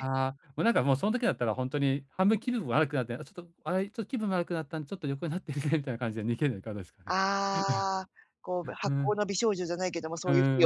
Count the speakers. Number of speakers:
2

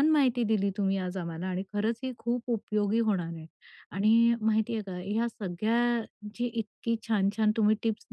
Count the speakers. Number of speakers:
1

